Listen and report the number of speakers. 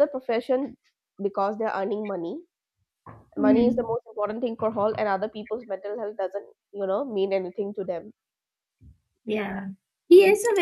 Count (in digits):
2